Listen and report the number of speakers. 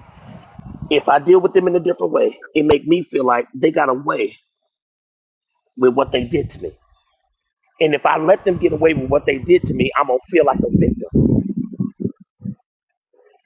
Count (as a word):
one